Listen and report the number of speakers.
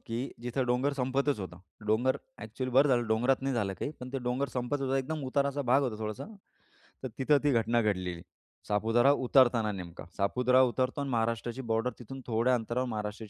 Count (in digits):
1